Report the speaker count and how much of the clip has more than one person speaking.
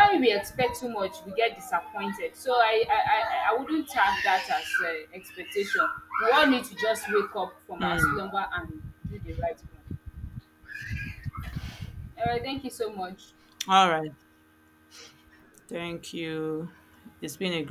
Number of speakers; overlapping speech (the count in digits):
2, about 2%